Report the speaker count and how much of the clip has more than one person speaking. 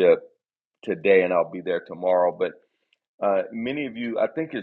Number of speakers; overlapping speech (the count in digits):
1, no overlap